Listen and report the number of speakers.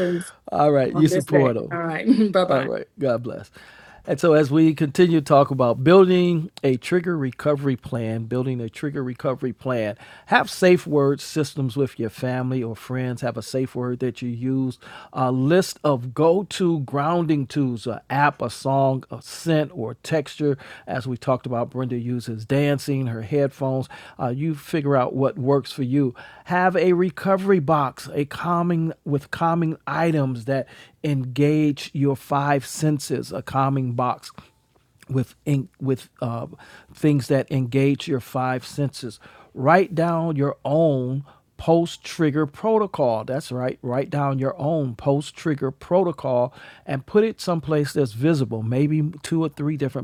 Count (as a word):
two